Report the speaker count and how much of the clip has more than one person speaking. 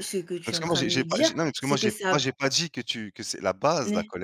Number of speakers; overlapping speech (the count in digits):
2, about 40%